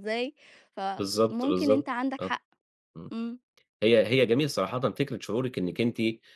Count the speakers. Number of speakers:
2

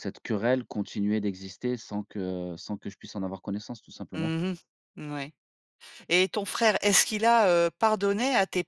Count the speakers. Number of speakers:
2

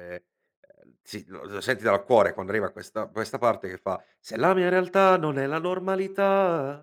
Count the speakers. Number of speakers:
1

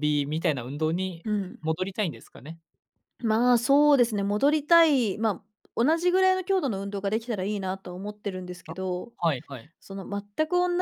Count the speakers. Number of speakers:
2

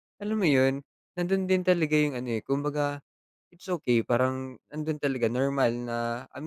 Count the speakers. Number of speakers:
1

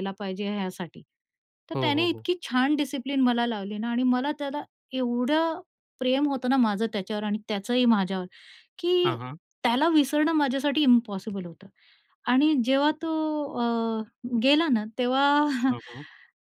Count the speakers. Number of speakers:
2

